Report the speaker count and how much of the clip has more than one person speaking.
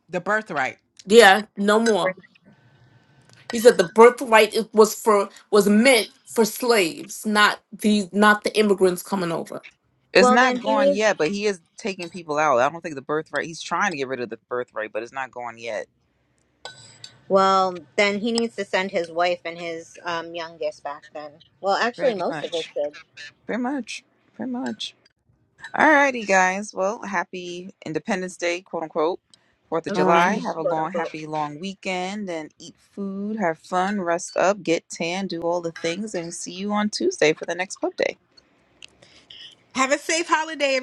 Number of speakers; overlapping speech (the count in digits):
4, about 6%